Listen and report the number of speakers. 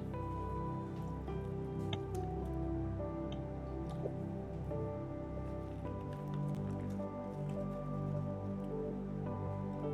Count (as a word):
zero